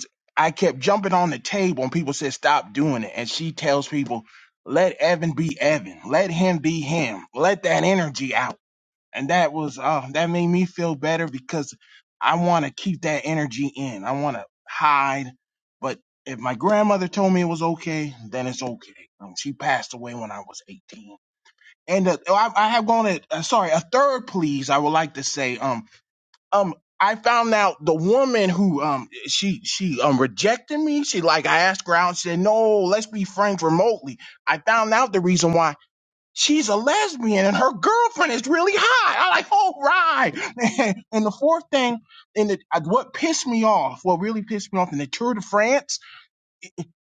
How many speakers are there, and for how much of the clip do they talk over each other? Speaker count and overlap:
one, no overlap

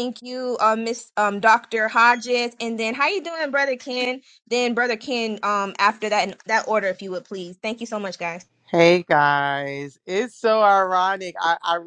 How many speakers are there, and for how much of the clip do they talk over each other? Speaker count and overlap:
two, no overlap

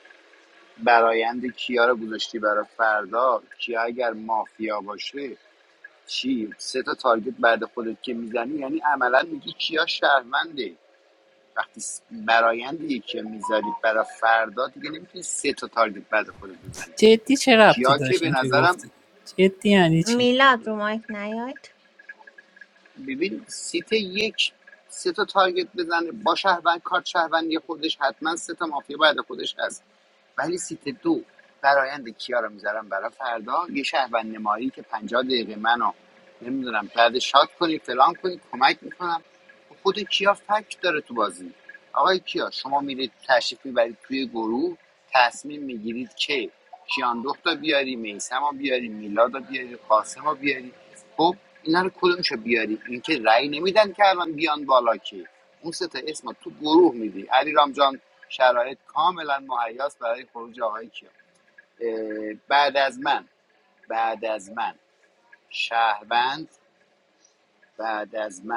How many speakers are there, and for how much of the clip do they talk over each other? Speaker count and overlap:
three, about 2%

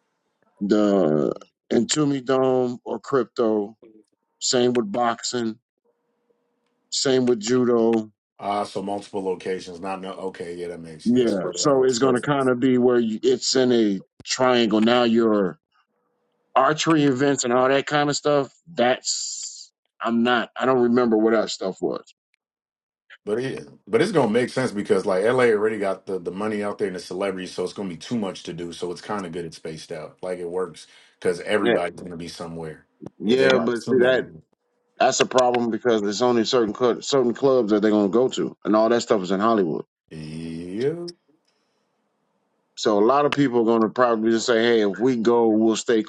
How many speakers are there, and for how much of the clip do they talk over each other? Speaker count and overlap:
two, about 5%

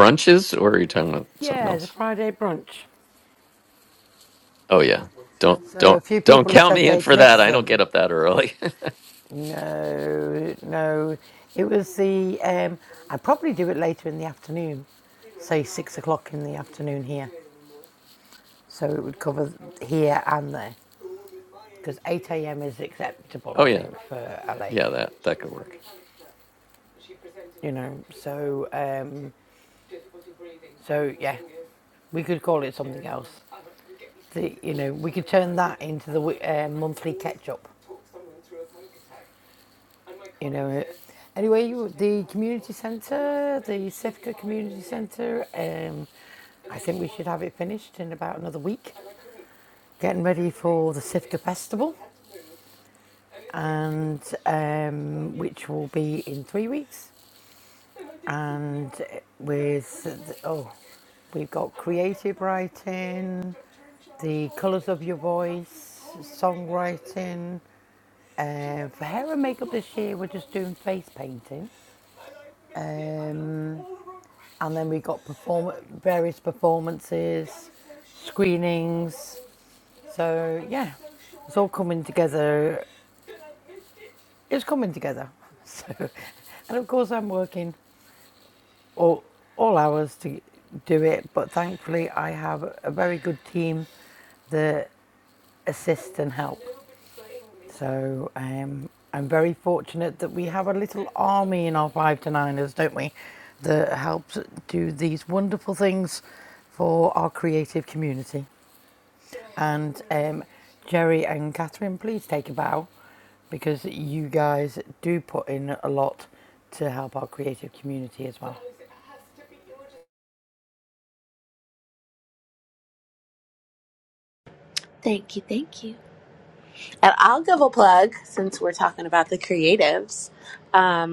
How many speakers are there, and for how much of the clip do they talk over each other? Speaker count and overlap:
three, about 2%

